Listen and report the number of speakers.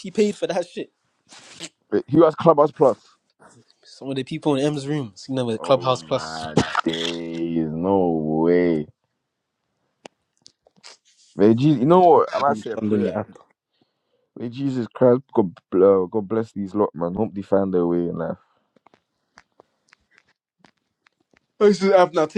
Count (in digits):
3